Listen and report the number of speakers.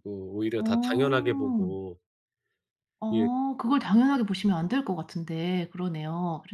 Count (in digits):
2